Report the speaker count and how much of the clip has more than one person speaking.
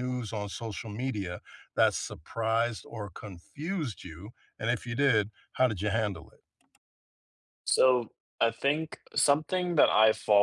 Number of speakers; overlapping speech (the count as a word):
two, no overlap